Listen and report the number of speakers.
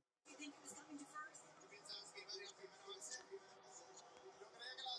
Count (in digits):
0